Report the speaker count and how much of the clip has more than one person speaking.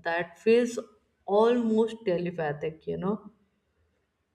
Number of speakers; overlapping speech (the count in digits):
1, no overlap